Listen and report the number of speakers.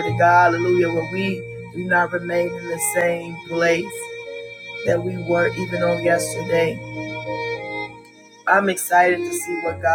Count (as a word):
one